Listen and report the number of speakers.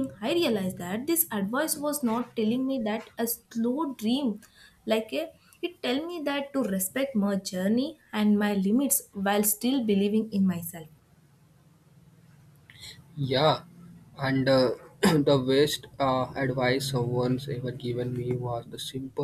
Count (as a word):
two